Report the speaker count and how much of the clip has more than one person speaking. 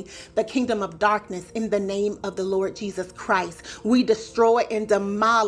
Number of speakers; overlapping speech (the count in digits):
1, no overlap